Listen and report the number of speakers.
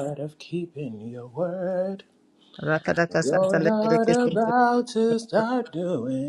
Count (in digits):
2